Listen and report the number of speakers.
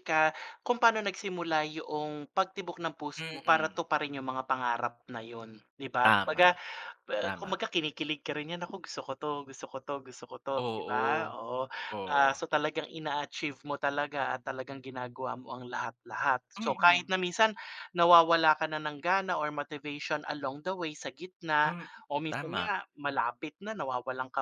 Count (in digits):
2